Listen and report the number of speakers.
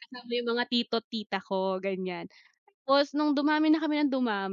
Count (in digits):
1